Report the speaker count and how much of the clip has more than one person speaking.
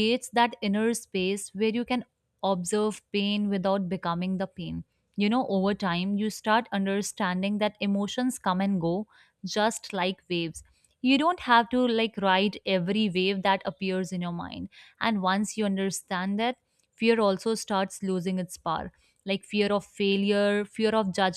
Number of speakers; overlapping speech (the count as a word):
one, no overlap